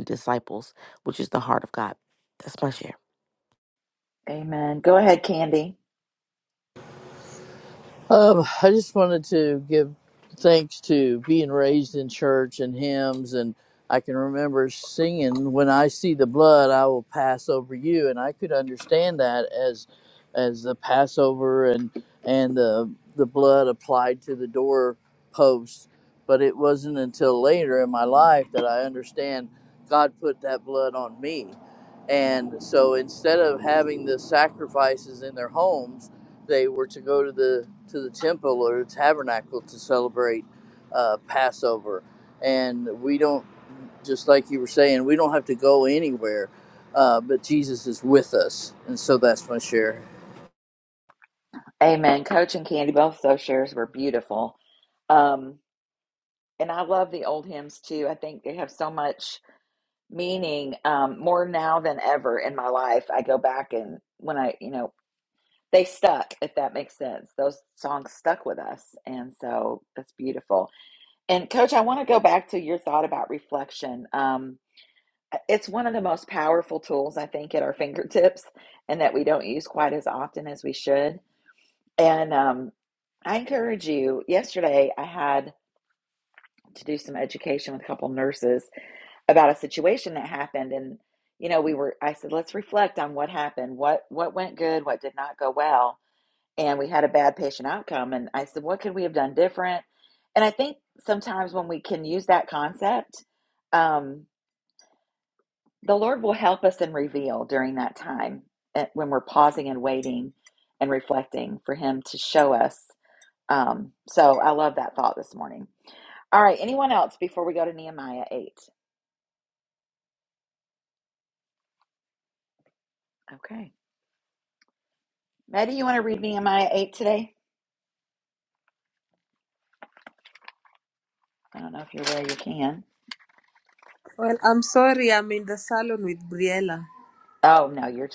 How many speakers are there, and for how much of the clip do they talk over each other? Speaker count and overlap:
4, no overlap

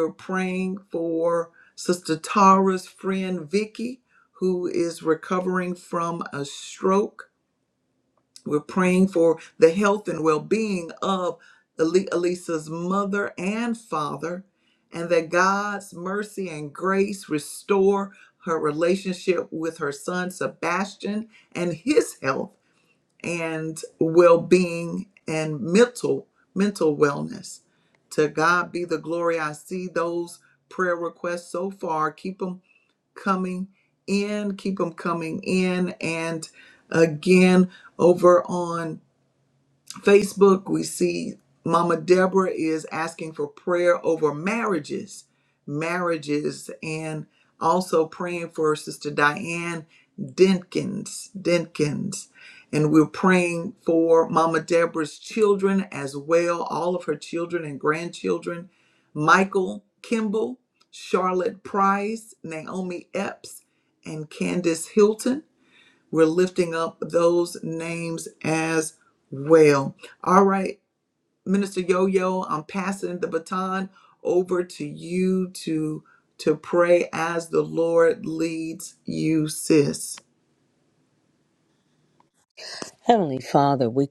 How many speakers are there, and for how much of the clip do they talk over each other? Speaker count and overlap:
2, no overlap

